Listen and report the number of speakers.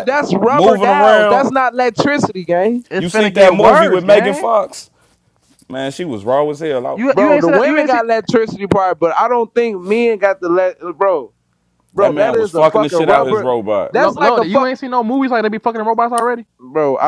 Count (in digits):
3